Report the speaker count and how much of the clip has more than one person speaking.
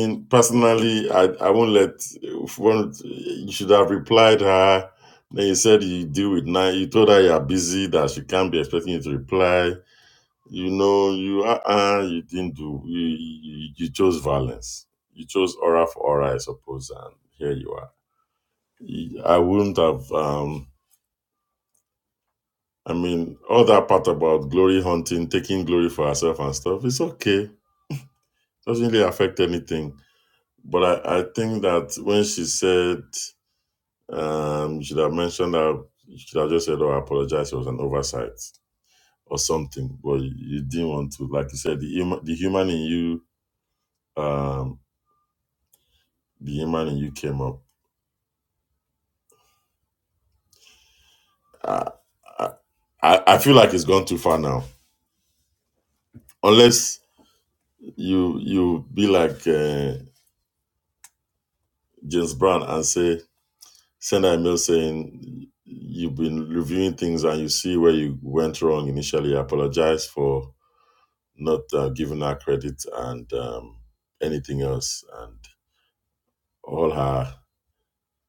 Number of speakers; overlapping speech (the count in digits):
1, no overlap